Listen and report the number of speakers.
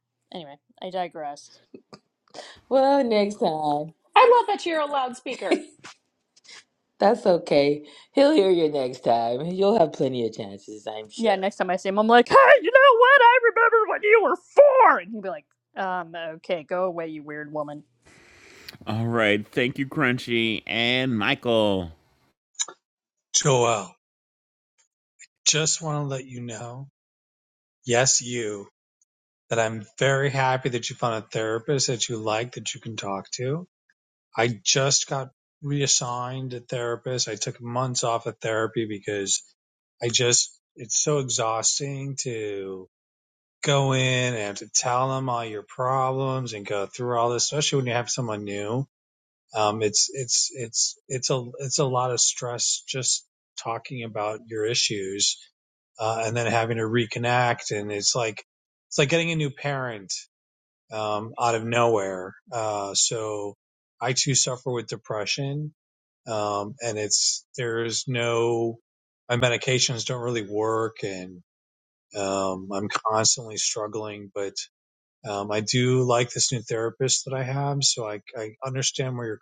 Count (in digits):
5